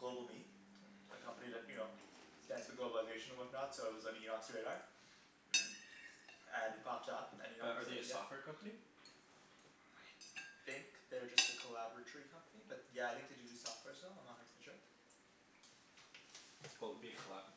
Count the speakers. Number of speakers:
two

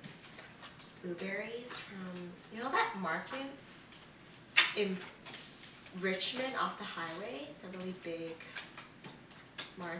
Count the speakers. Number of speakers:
one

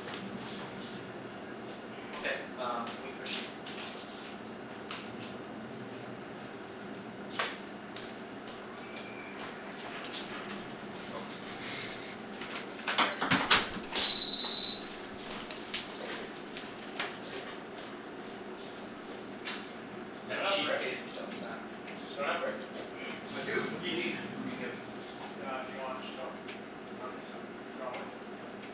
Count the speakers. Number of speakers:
three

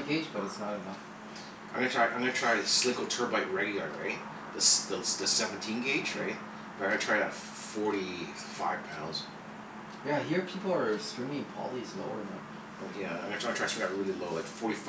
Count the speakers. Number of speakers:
two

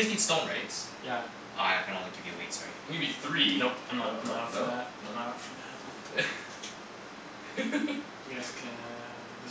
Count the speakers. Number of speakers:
three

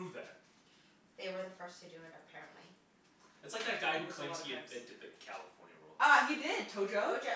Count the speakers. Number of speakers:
three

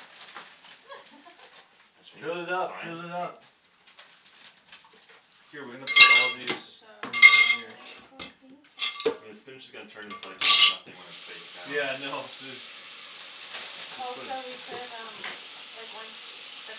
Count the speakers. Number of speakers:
three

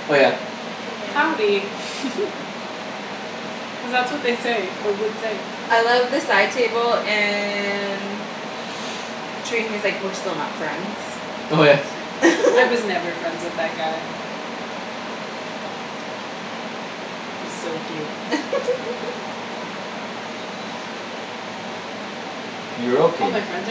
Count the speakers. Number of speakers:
three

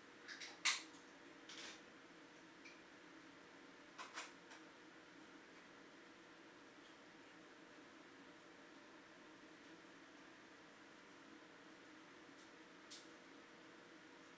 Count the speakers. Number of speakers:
zero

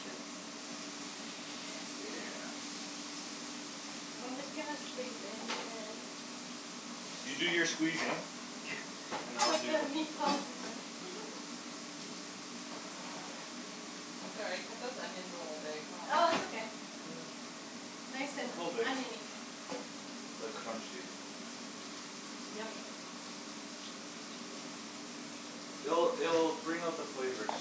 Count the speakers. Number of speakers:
three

